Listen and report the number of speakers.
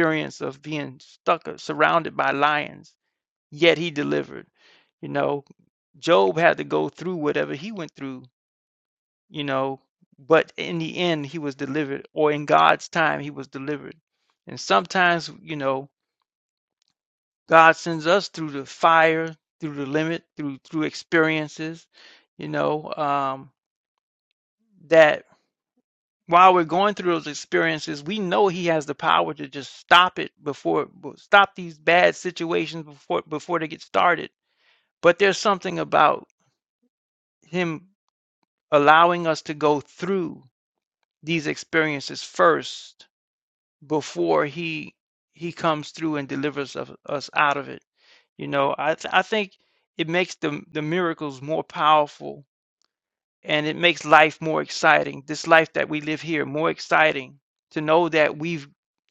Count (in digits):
1